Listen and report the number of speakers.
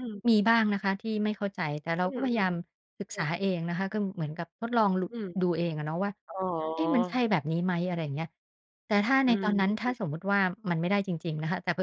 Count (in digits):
2